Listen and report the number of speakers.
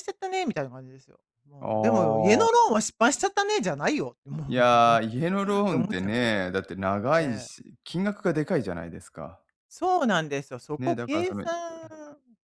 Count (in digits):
2